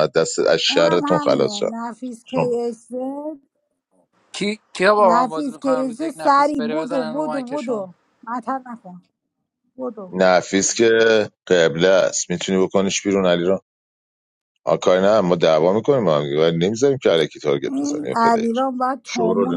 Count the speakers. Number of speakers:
3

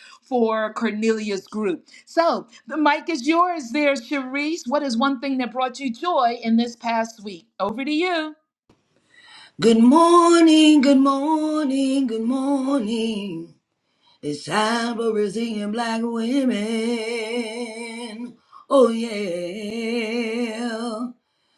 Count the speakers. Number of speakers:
2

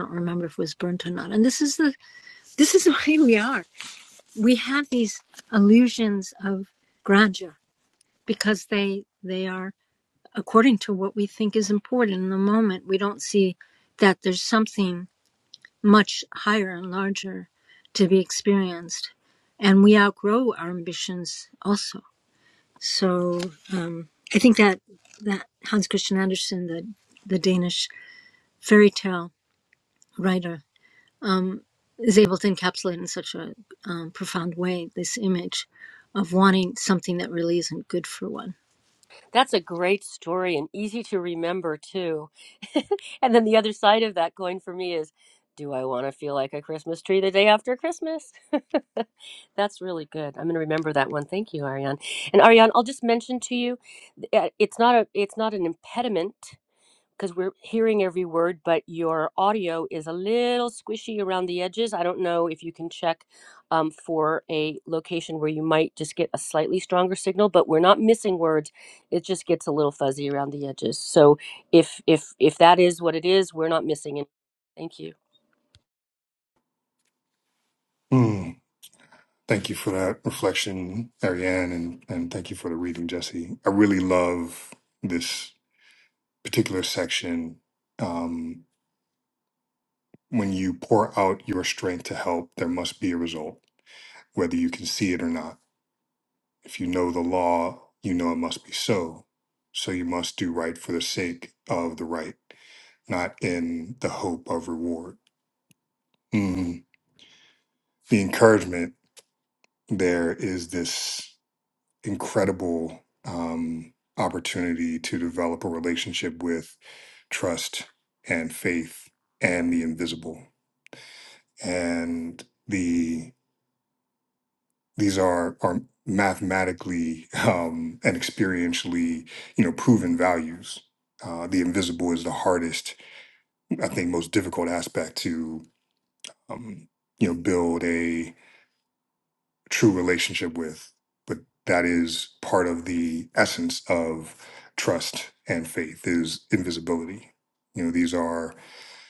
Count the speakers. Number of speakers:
3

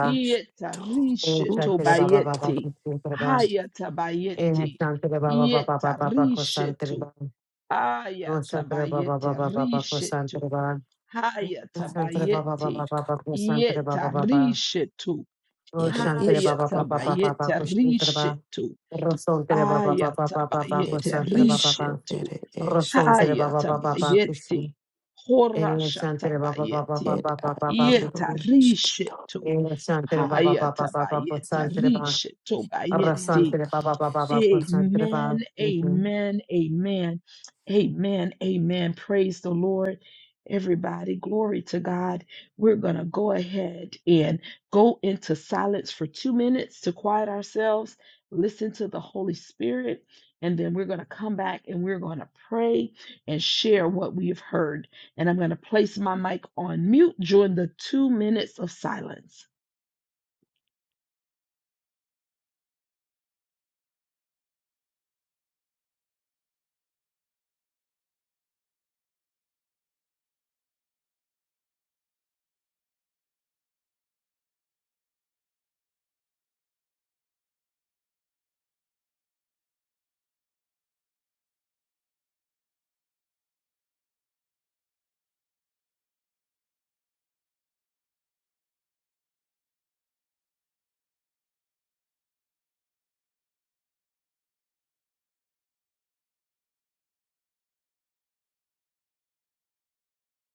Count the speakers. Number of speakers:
2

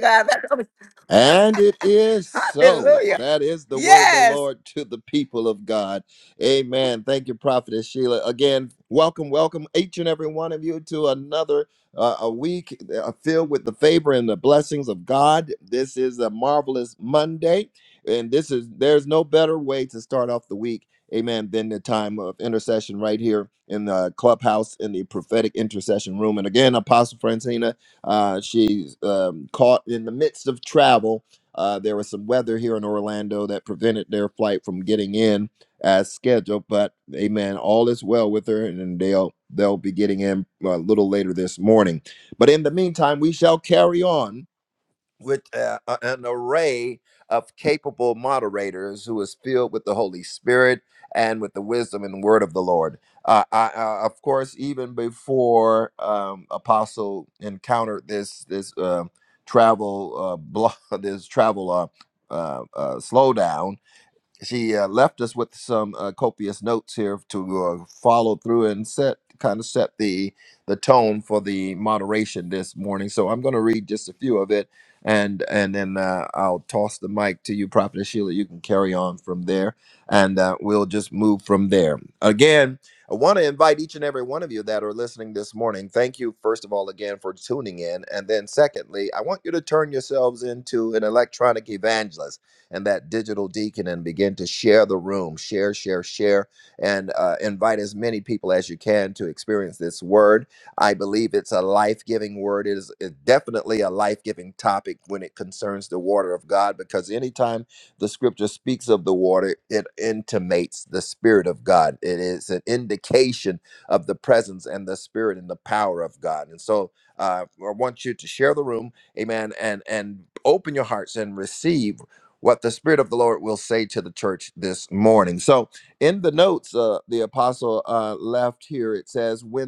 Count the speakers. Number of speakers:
2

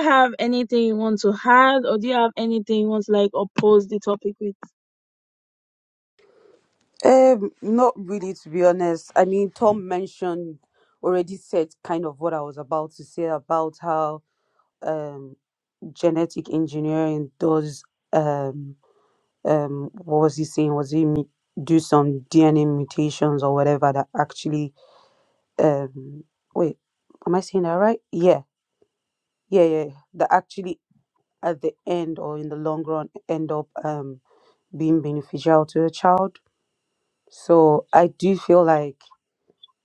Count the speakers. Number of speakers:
2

